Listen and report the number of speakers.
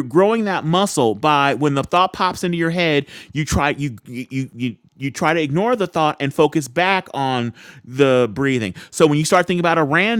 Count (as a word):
one